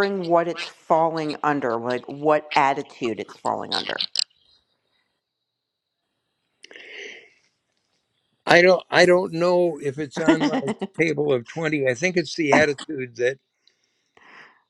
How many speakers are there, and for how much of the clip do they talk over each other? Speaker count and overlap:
two, no overlap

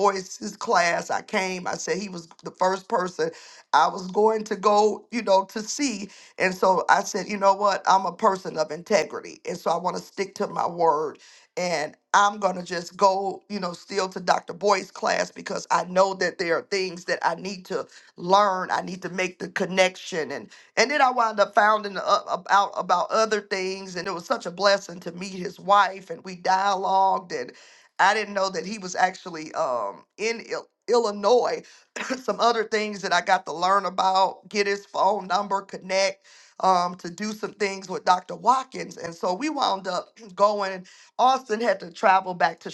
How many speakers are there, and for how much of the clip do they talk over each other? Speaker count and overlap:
one, no overlap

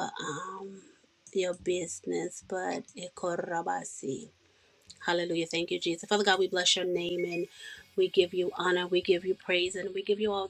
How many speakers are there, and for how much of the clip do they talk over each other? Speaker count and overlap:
one, no overlap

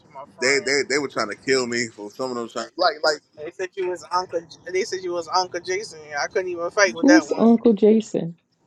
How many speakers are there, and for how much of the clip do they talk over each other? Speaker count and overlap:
three, about 9%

